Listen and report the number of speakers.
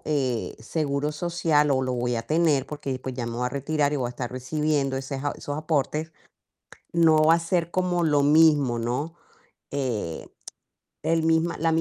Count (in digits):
1